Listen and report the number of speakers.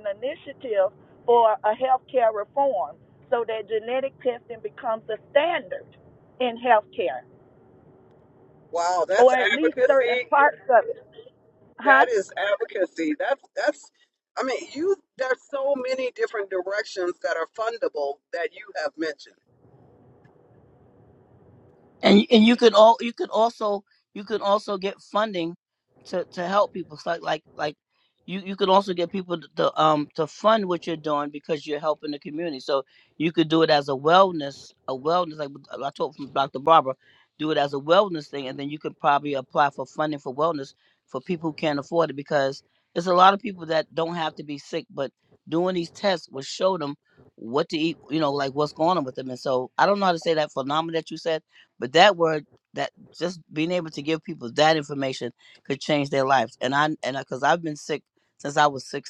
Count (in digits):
3